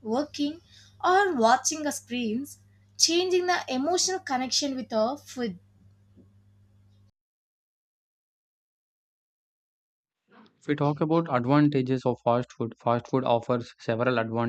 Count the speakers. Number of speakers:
2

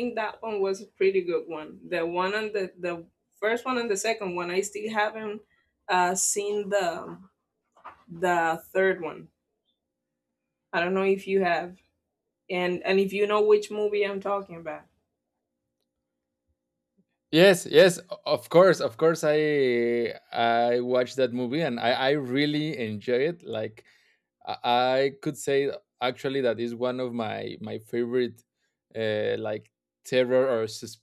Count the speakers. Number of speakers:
2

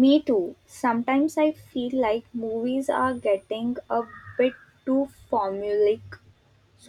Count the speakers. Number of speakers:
1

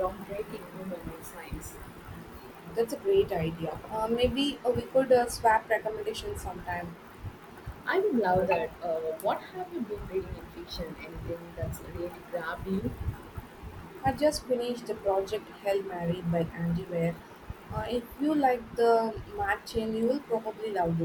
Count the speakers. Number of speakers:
2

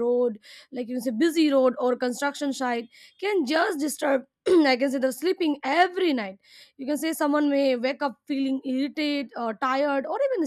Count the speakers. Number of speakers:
1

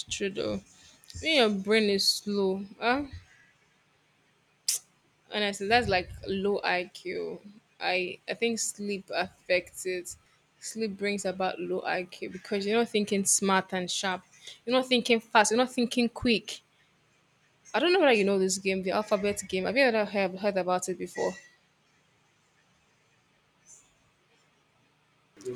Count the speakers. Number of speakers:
1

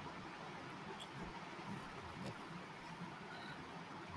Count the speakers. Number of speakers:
0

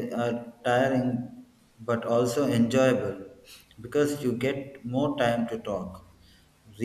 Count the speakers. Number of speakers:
1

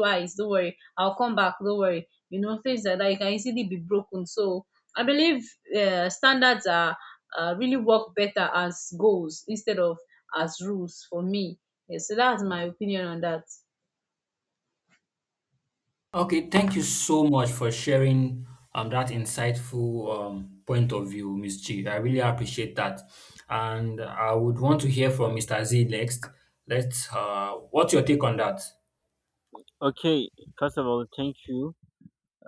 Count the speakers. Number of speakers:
3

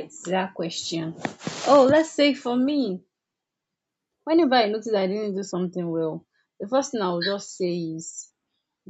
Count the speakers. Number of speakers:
1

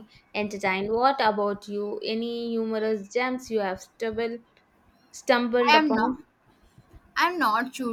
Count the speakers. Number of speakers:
2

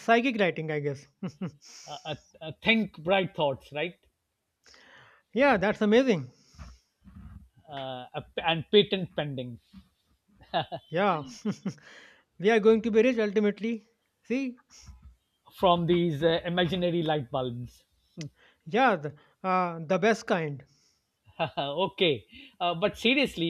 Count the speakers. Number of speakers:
2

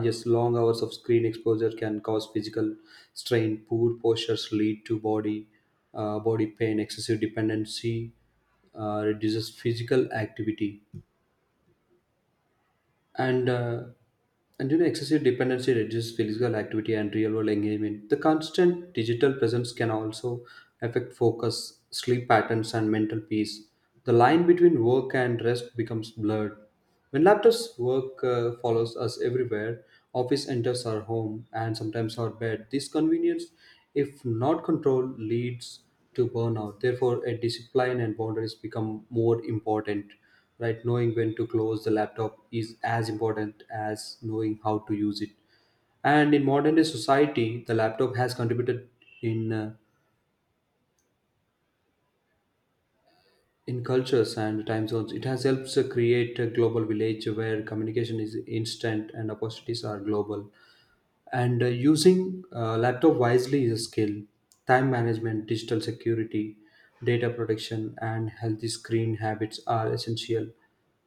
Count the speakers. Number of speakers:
1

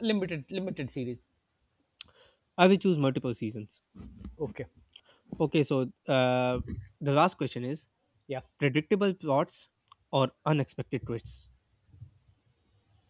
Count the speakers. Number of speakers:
2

